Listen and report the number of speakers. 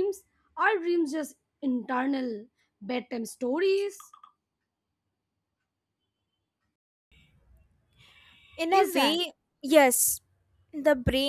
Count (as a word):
two